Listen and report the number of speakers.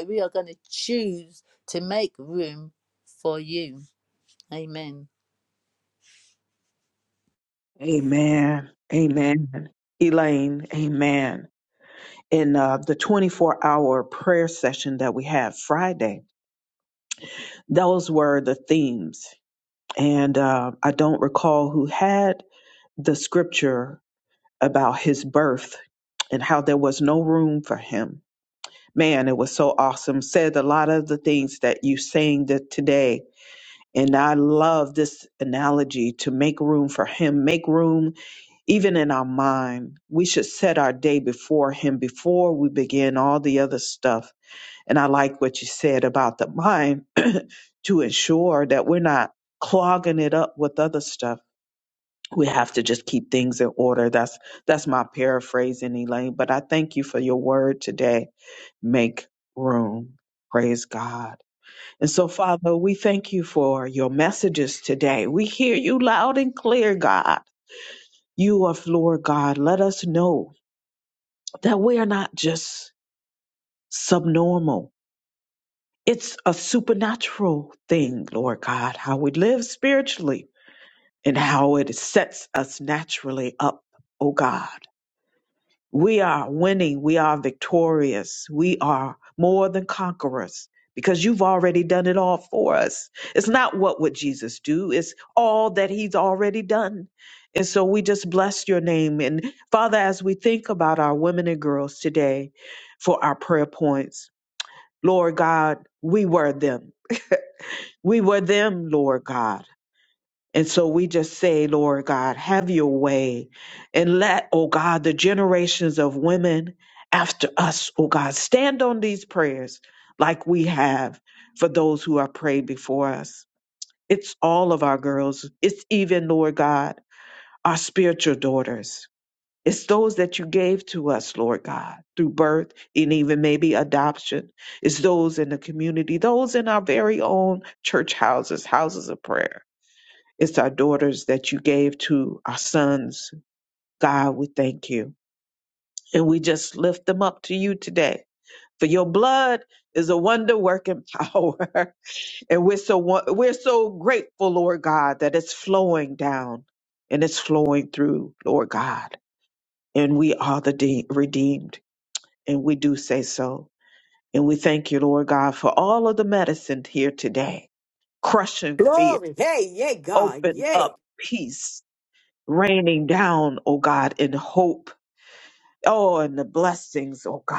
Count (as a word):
three